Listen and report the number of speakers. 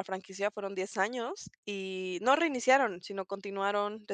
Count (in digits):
1